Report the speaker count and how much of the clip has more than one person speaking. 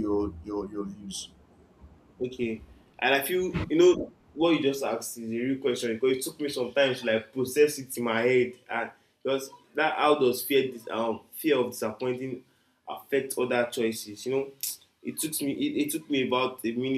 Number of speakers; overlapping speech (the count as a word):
two, no overlap